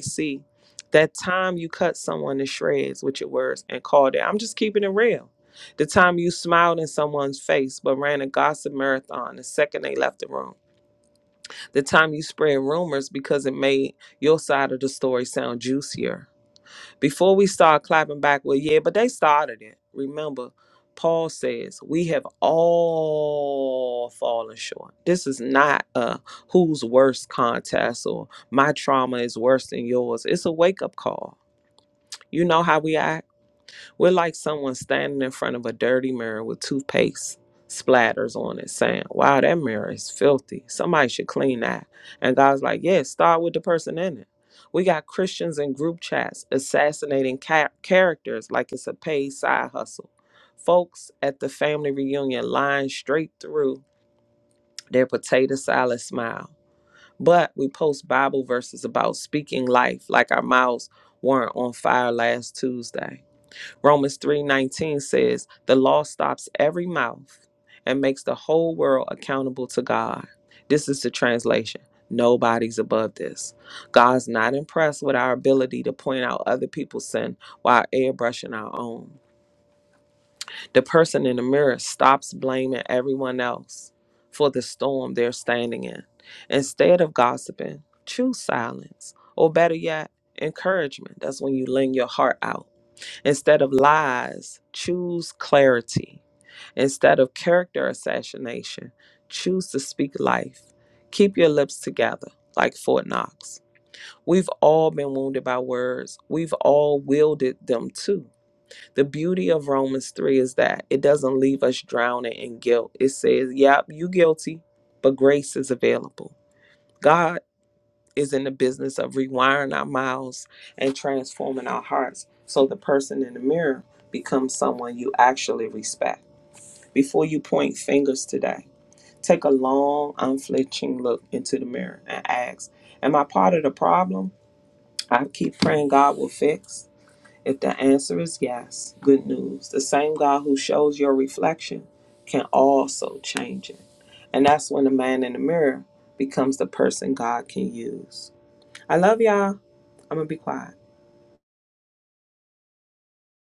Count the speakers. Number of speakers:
1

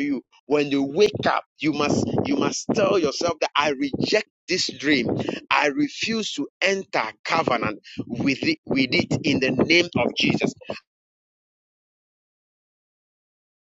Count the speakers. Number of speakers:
1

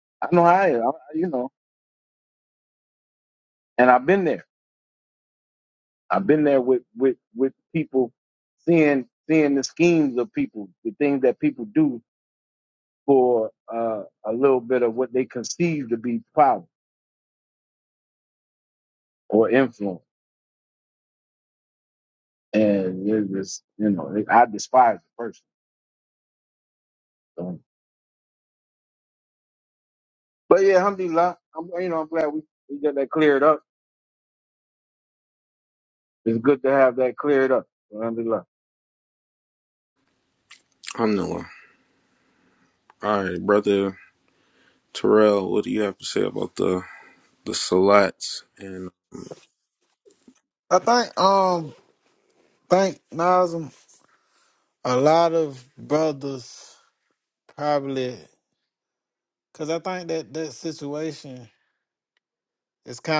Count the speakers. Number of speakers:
3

